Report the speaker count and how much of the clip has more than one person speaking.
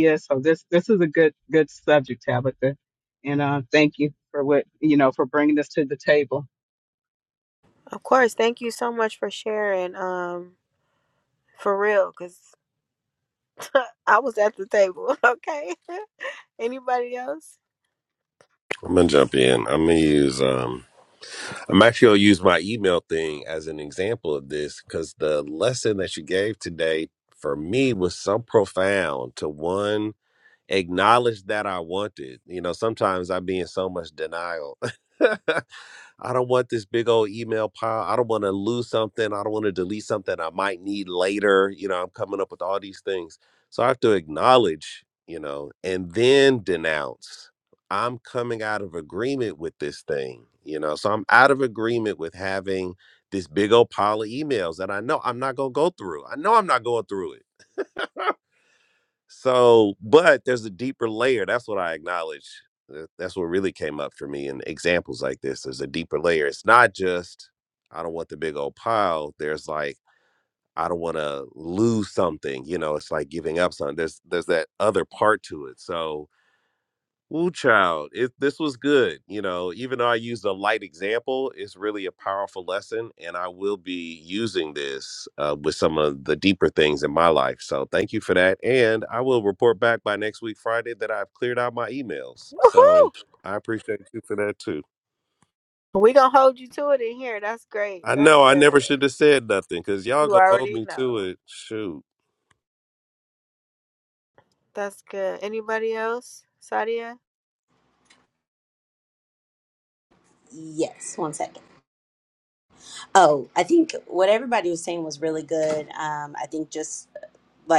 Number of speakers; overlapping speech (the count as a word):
four, about 2%